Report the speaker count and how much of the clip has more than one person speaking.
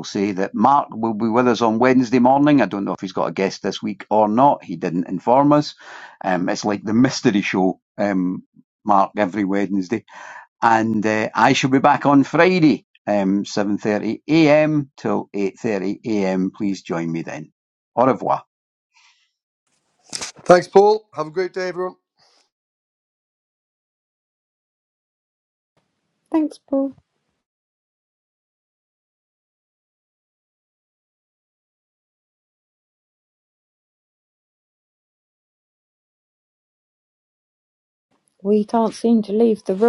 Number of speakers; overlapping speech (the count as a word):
three, no overlap